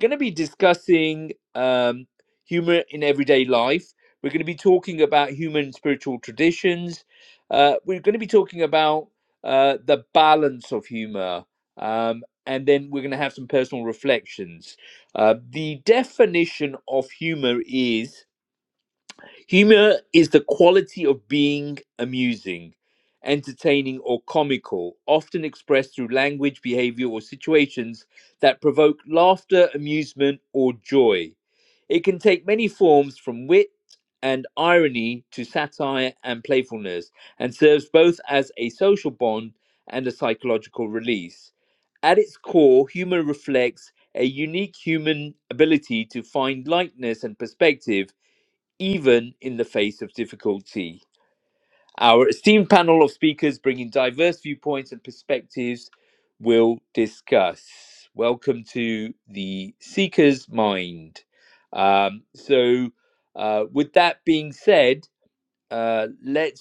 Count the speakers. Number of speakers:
1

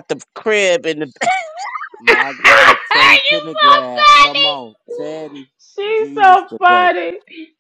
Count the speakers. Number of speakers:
3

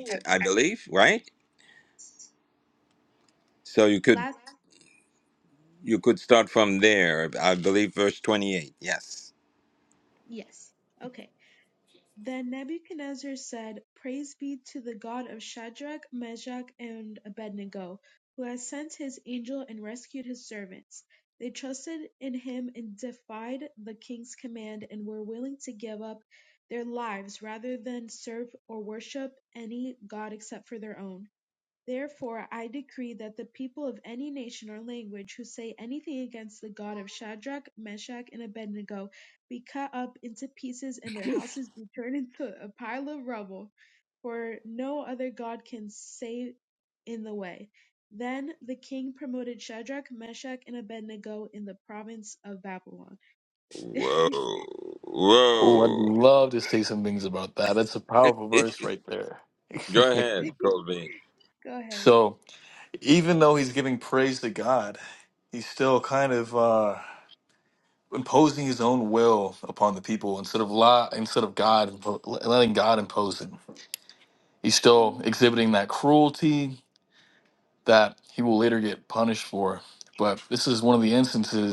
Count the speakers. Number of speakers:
3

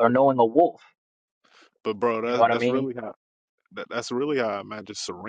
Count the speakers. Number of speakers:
2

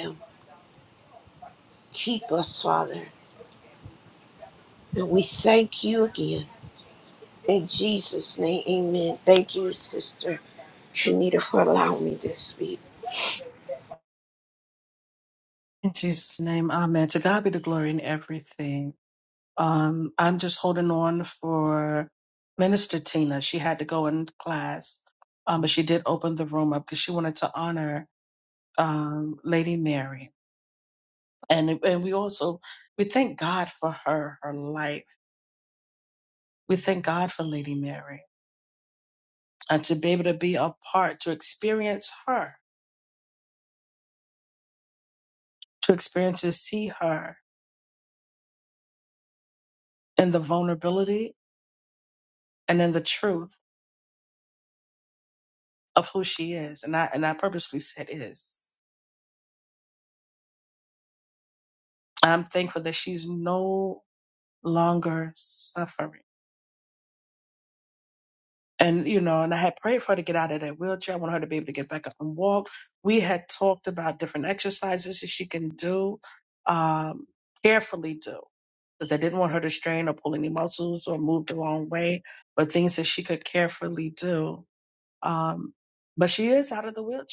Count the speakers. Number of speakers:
2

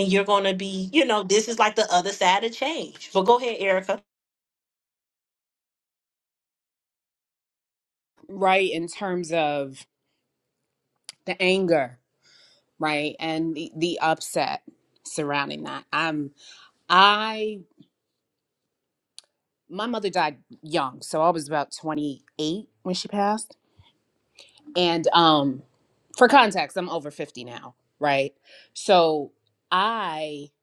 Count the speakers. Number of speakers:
2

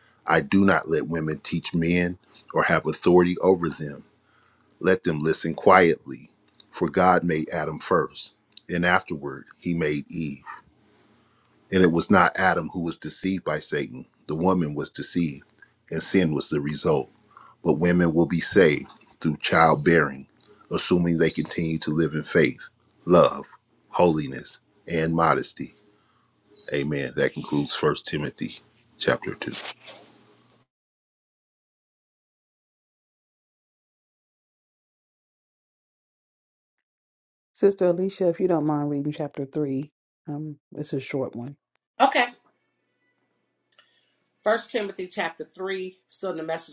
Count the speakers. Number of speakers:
3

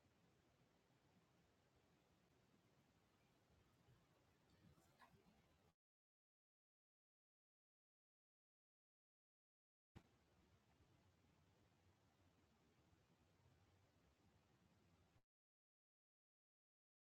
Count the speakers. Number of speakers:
0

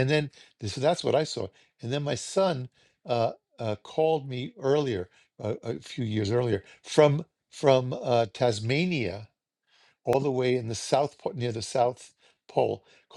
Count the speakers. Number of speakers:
1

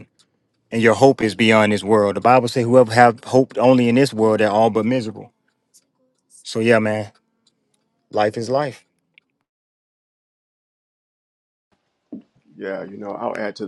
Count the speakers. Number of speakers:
2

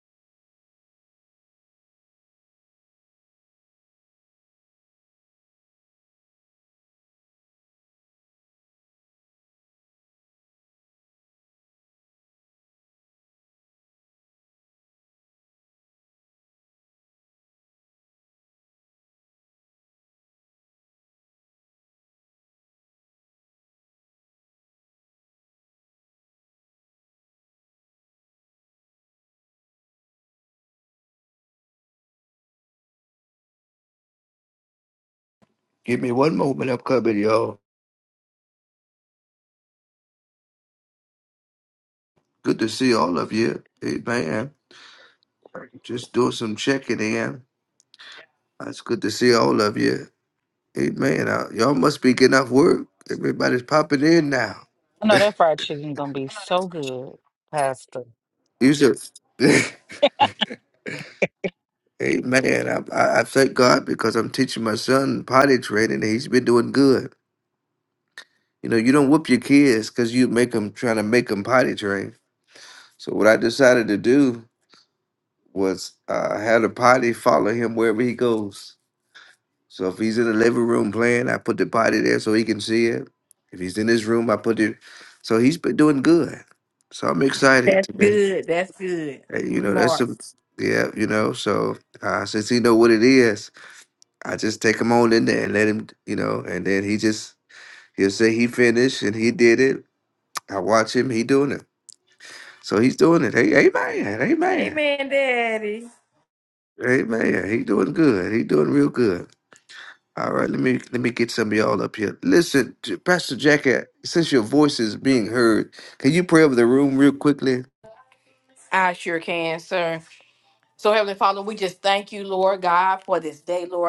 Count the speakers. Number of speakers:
3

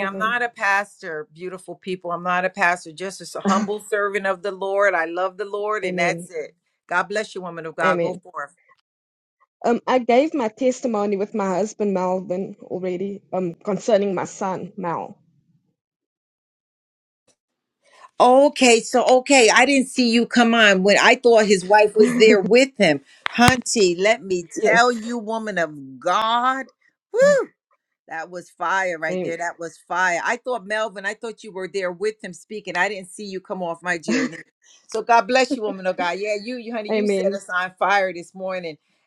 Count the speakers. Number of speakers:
2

